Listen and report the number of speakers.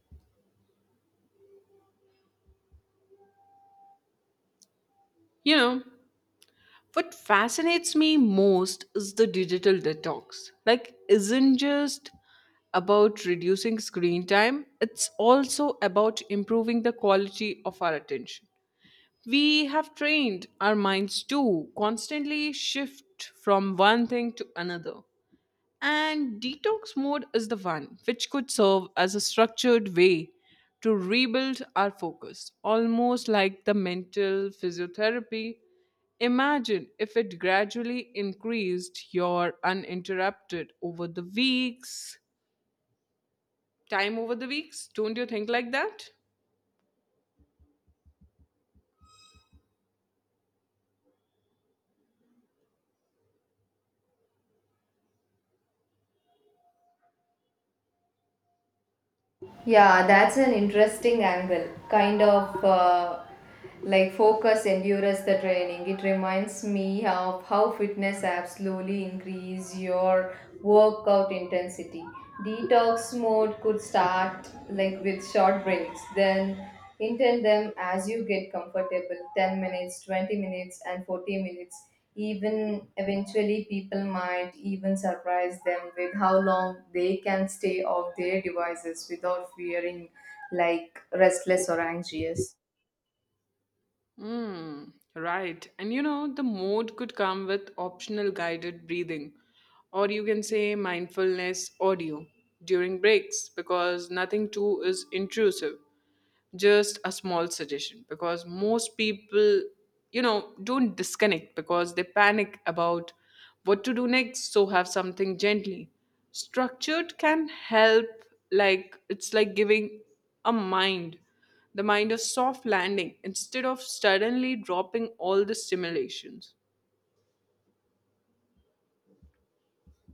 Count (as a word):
two